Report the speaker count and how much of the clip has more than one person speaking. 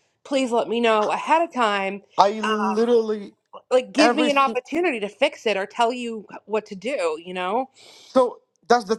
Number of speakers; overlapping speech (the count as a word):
two, about 11%